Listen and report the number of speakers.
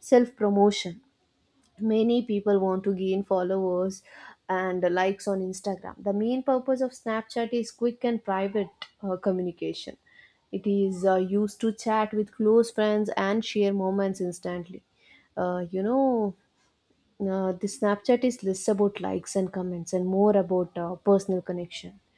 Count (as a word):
one